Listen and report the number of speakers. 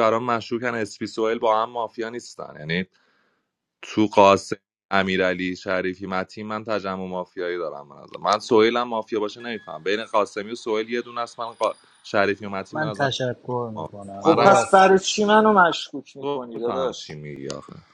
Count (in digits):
3